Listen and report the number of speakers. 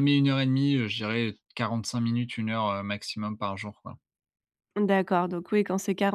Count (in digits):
2